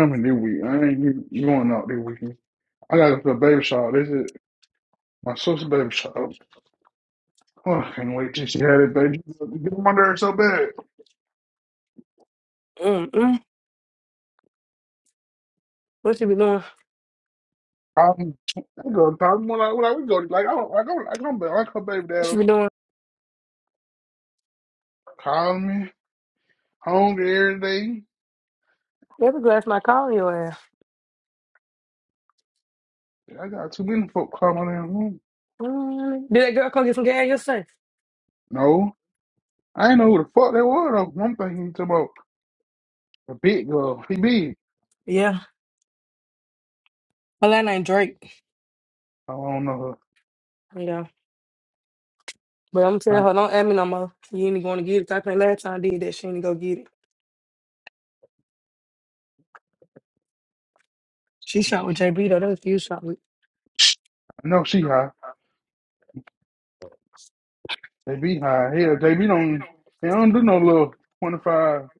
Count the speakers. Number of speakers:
2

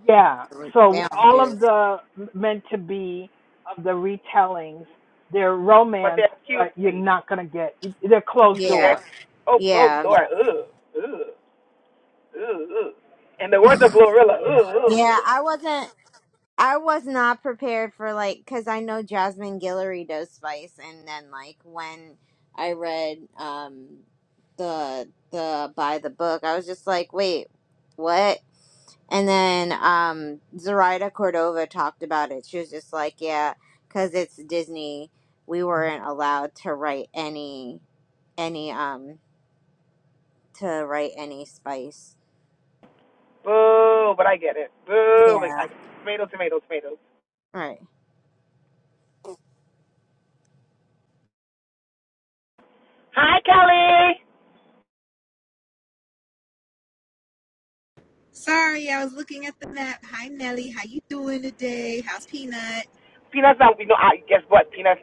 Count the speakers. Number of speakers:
4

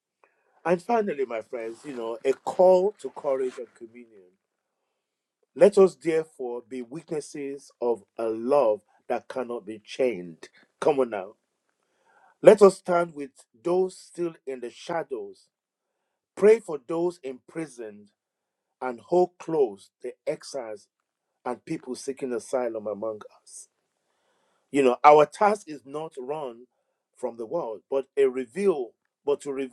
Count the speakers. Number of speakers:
1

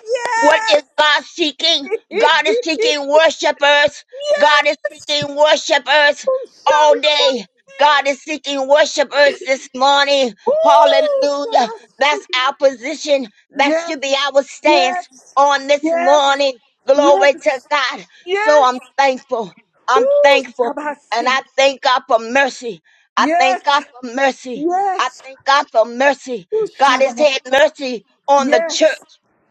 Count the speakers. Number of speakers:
2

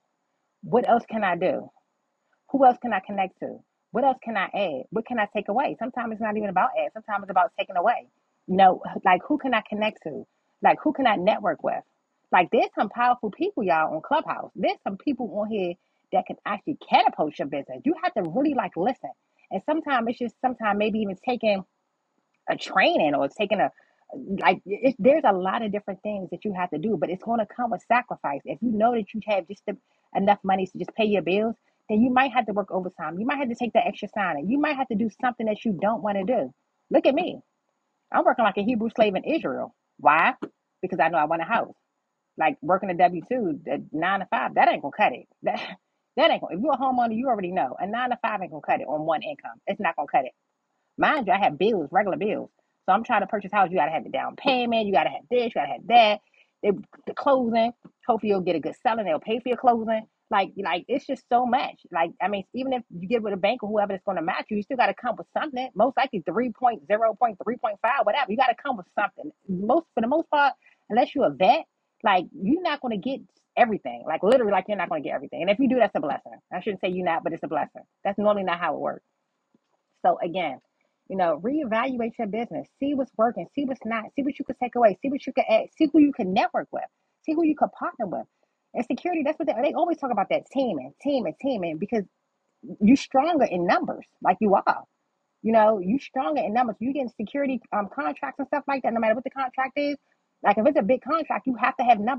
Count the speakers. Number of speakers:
1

